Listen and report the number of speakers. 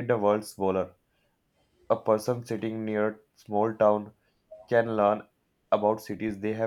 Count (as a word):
one